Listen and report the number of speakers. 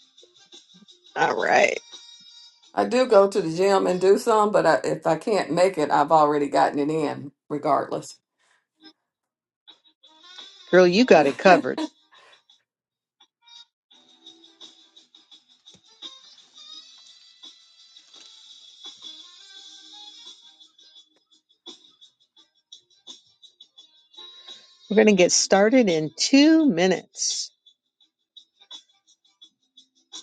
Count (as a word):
two